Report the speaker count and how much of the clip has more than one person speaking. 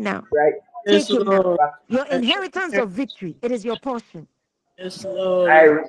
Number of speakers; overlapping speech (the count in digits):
3, about 15%